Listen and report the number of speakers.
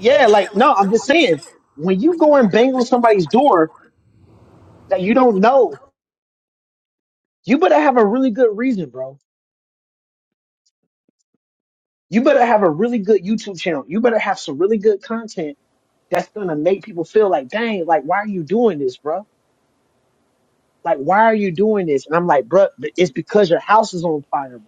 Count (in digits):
1